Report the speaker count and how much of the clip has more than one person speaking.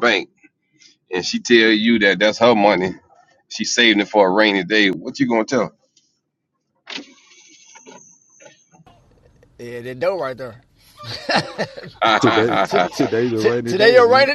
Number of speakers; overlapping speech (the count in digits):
3, about 7%